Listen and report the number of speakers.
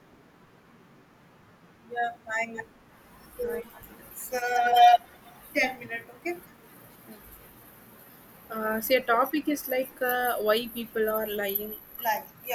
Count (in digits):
2